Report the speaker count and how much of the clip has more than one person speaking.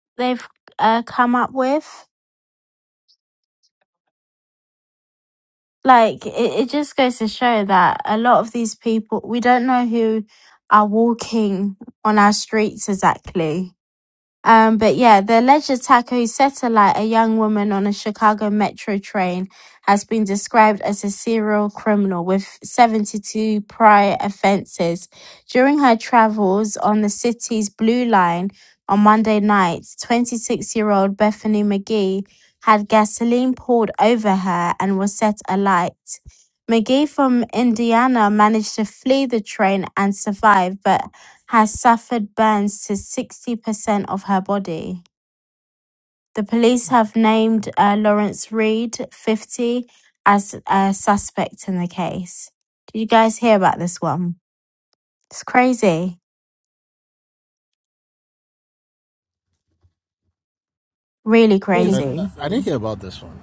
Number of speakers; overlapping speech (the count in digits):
2, about 1%